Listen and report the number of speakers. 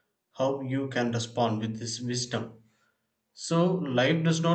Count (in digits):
1